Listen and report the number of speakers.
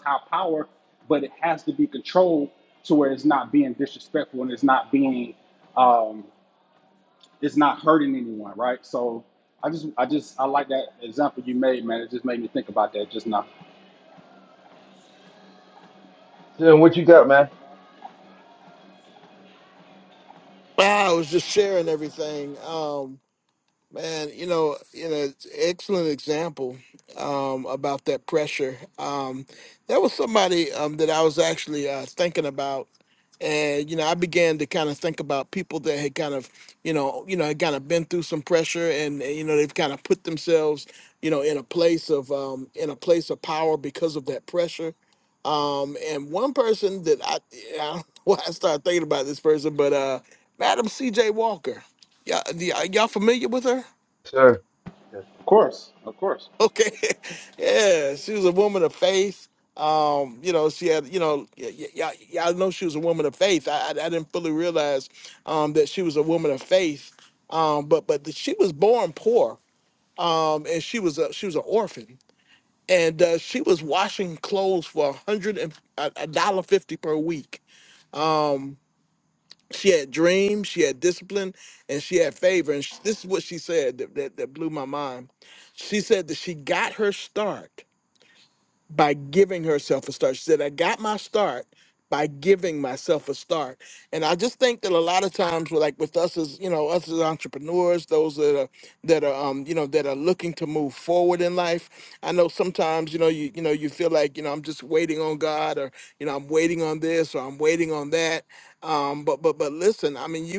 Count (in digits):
3